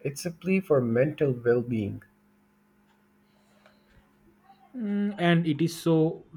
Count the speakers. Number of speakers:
two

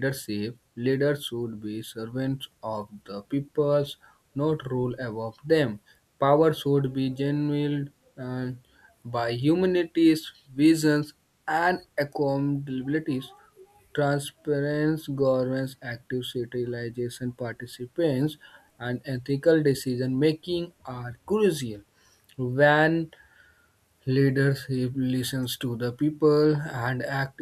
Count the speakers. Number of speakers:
one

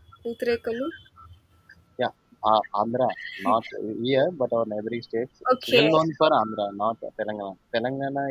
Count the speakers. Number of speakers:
two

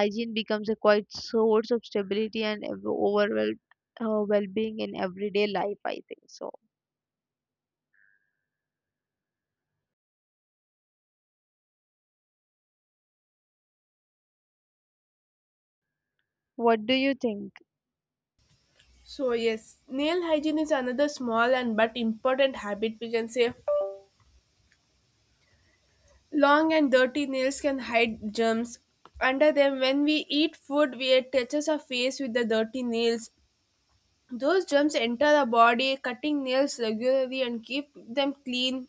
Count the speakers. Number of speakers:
two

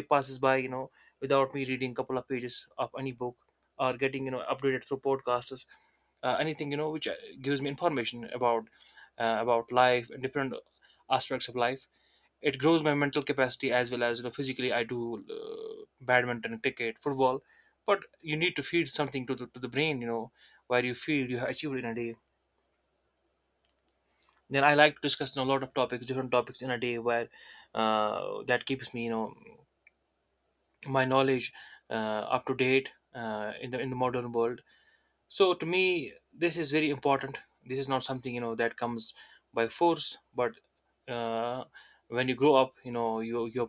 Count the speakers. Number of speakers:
one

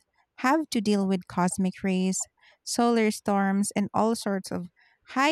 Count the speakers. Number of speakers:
one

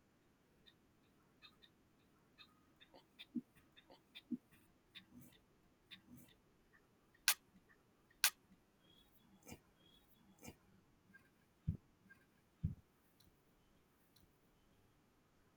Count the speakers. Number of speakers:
zero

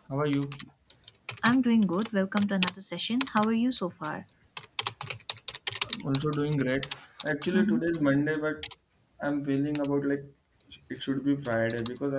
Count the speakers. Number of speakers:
two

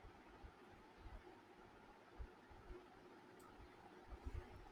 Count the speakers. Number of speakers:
zero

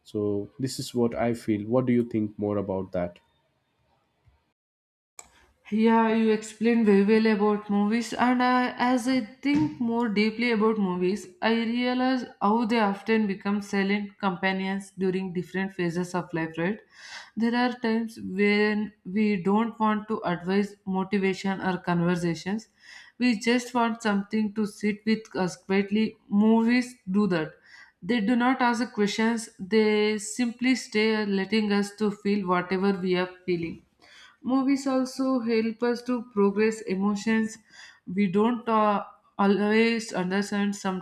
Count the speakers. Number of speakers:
two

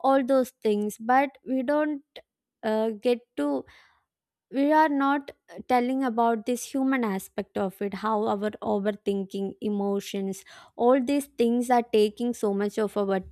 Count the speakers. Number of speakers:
one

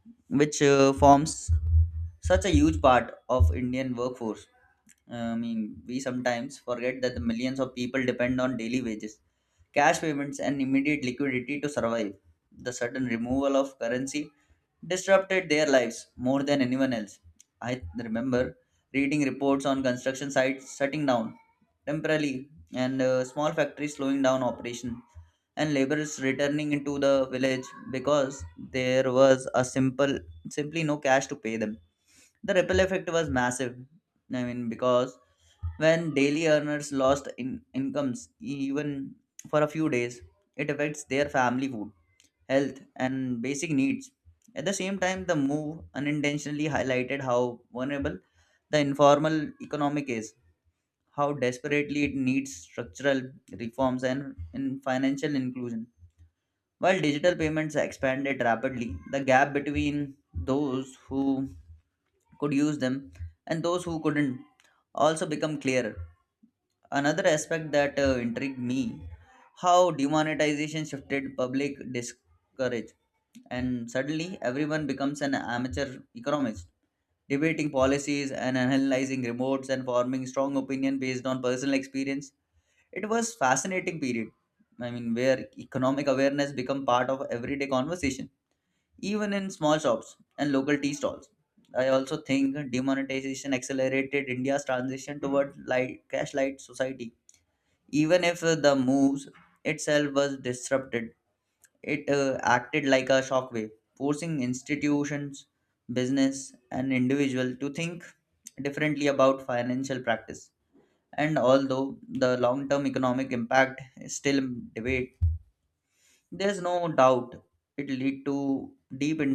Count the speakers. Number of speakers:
one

